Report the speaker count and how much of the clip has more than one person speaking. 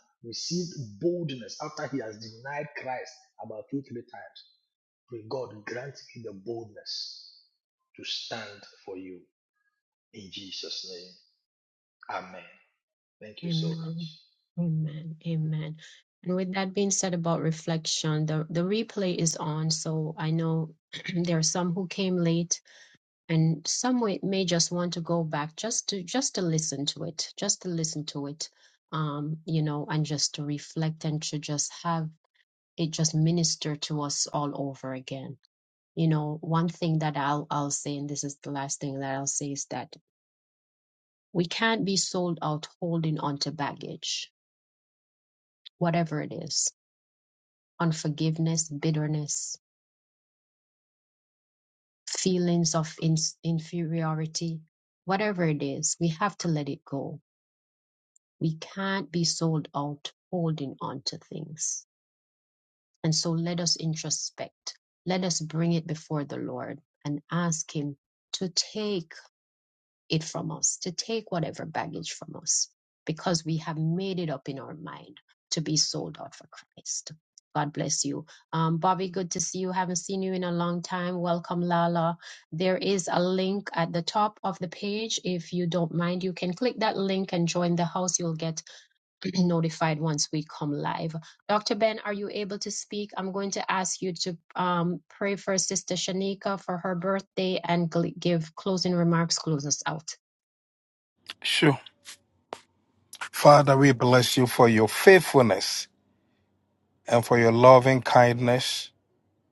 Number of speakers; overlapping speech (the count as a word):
three, about 1%